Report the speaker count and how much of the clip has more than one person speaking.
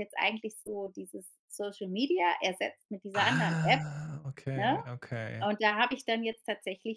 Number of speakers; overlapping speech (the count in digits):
2, about 15%